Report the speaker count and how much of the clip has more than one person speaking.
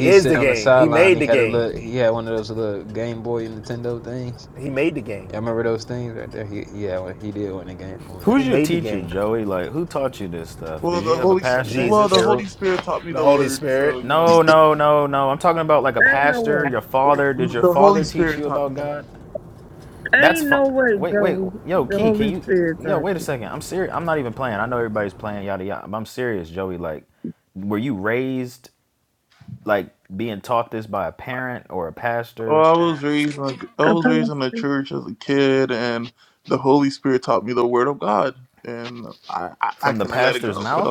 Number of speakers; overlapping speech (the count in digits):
5, about 30%